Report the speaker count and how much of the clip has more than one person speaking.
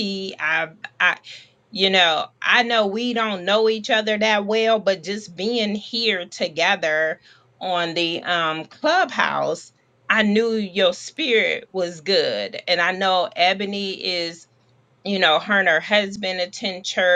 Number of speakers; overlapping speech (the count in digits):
1, no overlap